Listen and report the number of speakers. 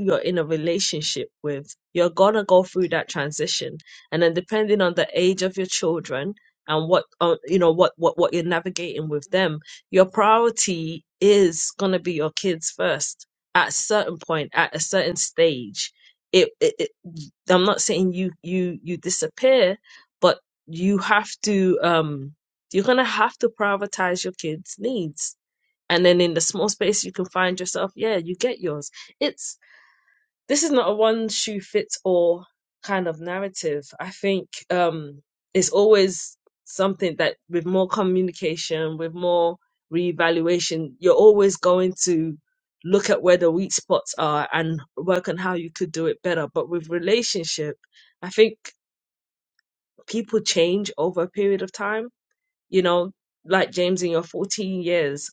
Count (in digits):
1